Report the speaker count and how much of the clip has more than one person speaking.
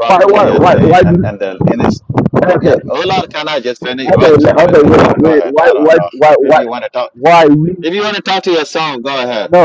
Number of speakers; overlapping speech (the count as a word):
two, about 42%